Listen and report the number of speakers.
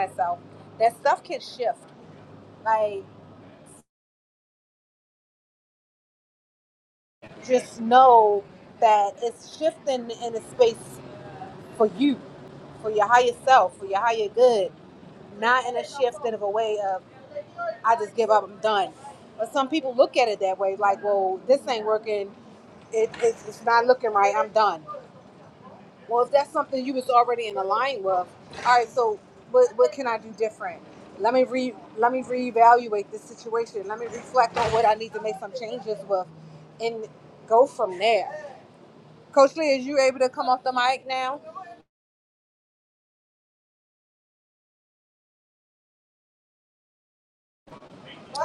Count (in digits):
1